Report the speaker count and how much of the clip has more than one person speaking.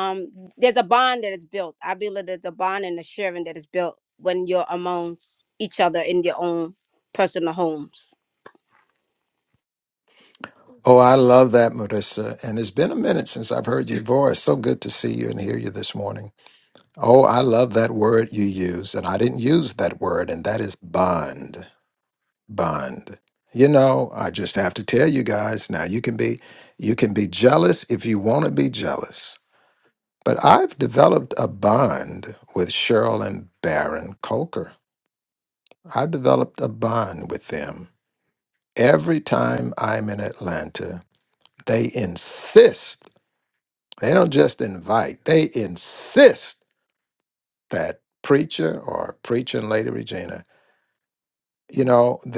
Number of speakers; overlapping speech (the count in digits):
2, no overlap